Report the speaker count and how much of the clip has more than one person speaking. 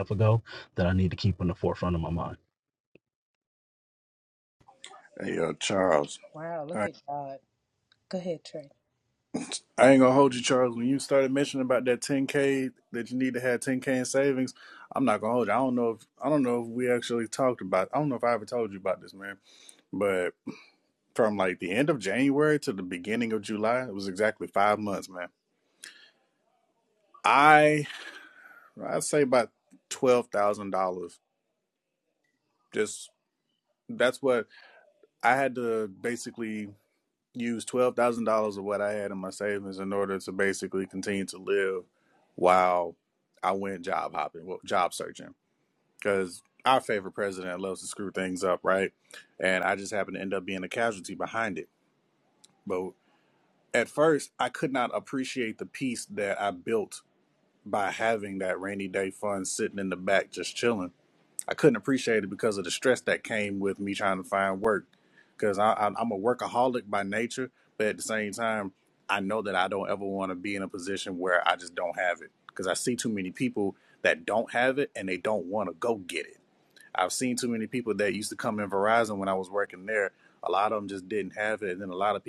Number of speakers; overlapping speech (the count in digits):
3, under 1%